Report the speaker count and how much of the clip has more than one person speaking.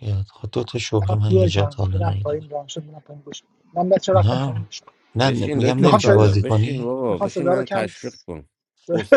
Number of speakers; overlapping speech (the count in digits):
3, about 46%